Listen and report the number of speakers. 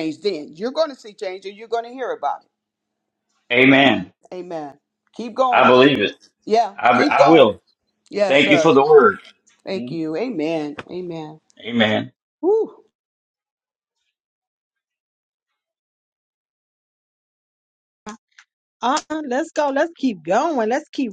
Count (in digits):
3